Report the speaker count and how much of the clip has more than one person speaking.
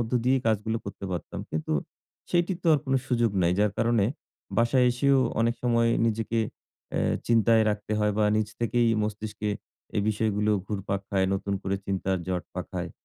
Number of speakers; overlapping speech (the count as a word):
one, no overlap